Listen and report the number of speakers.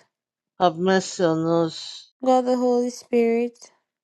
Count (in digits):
2